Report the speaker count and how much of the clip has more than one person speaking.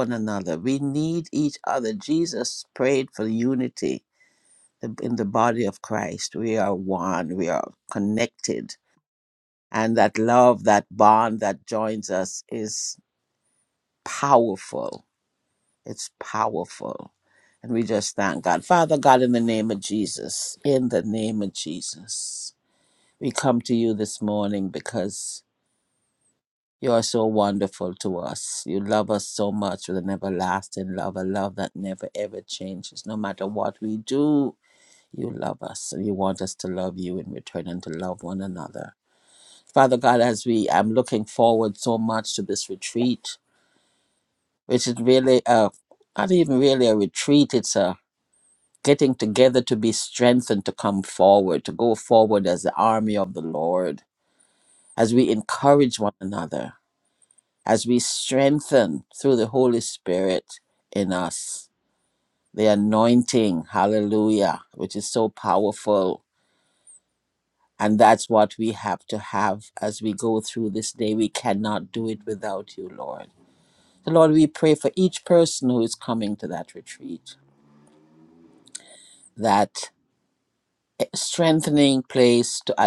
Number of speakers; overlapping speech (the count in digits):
1, no overlap